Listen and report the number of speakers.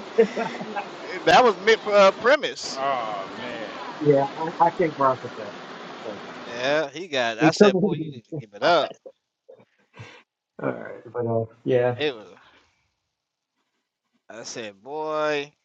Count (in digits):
3